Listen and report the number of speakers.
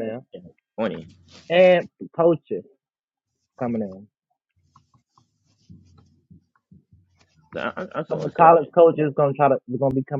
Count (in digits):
2